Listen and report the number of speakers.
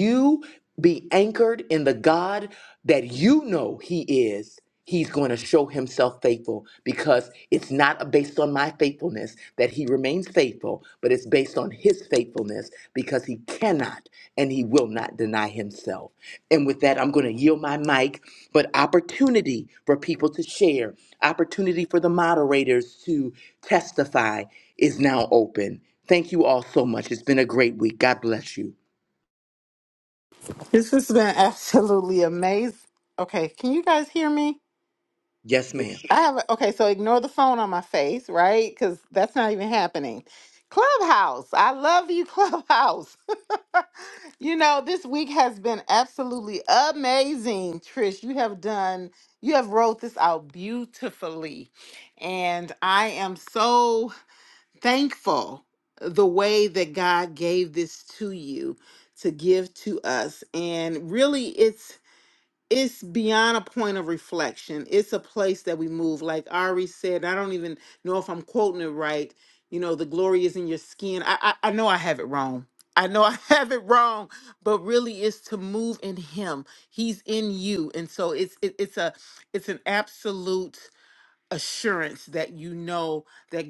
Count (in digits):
2